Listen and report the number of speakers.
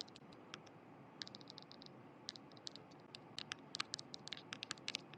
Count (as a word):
zero